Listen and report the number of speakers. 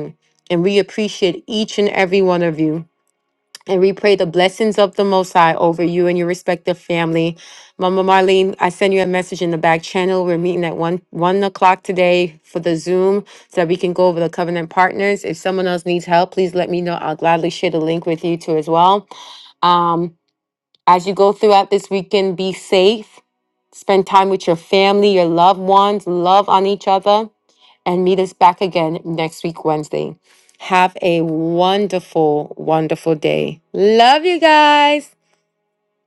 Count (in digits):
1